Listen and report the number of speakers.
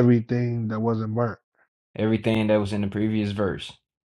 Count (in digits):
2